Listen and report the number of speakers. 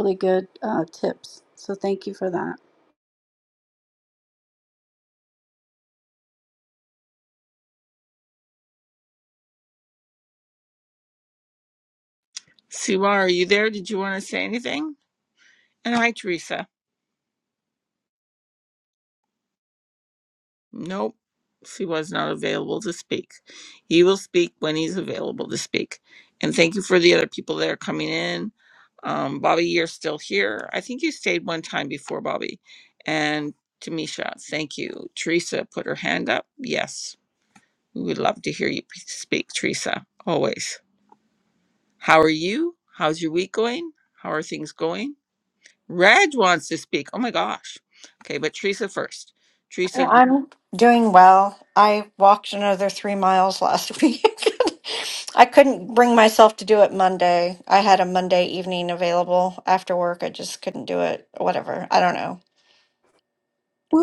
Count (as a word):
three